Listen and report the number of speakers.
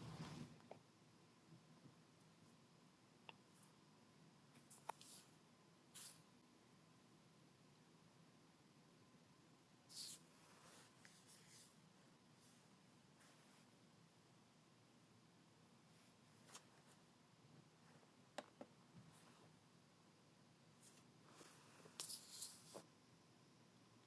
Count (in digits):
0